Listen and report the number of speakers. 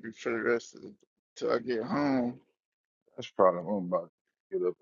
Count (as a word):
two